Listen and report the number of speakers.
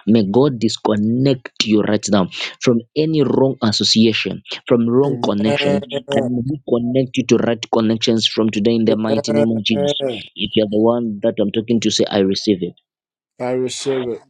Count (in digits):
2